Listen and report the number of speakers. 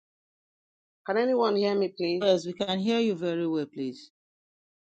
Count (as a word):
two